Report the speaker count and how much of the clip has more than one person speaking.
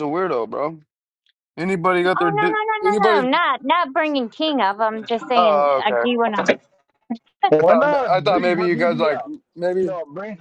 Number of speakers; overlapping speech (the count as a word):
three, about 35%